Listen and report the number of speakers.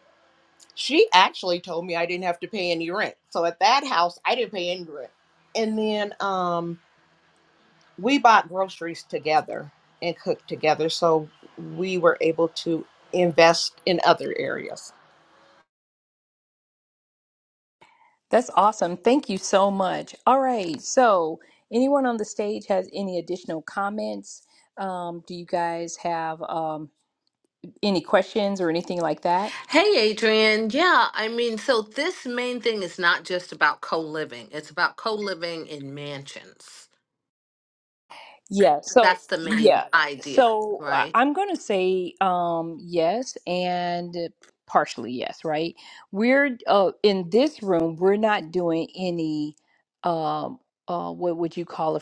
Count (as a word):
three